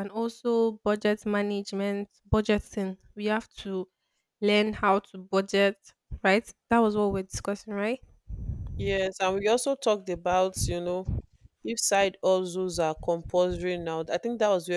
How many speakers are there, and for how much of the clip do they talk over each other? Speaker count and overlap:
2, no overlap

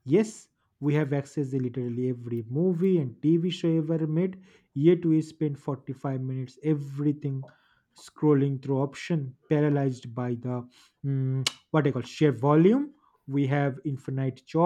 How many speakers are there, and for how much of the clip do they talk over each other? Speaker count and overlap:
1, no overlap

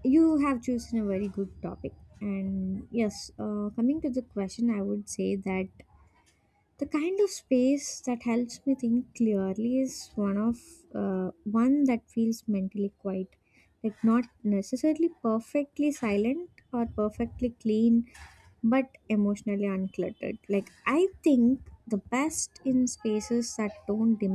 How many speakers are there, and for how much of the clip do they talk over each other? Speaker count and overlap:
1, no overlap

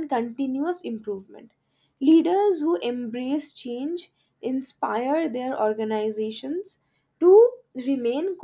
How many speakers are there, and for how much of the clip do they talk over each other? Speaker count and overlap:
1, no overlap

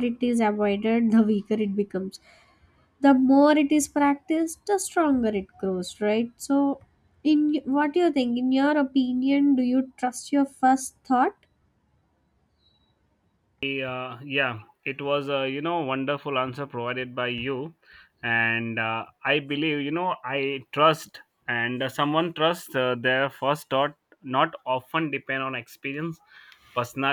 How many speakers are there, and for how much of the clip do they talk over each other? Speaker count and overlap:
2, no overlap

